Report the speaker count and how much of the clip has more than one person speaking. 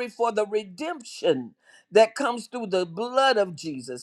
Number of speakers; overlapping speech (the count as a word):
one, no overlap